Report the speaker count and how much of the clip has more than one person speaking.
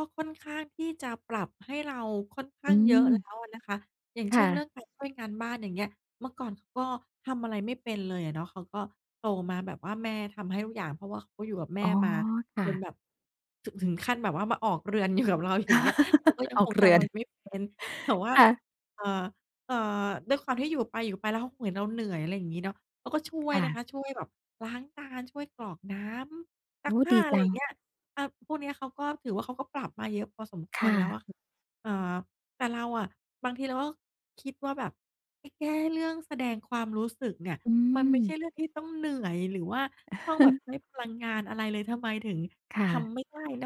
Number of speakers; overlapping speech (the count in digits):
2, about 8%